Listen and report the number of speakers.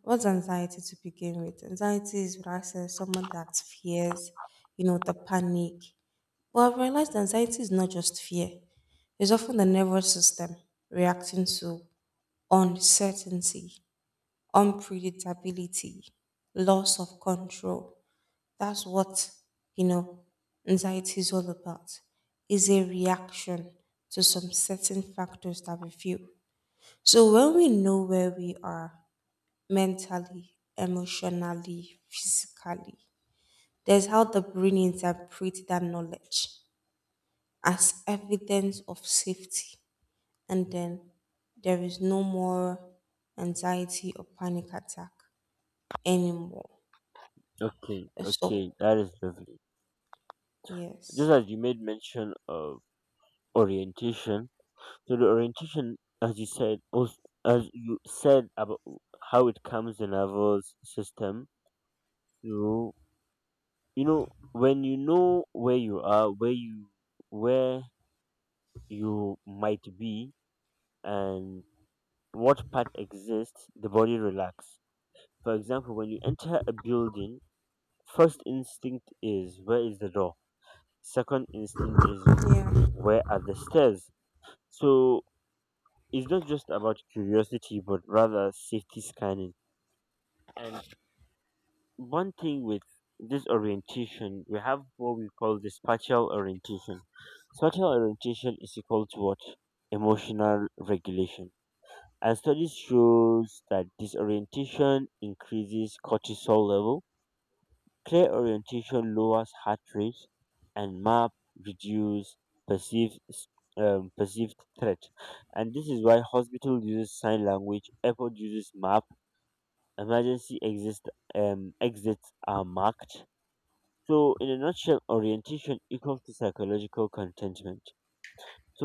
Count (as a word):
two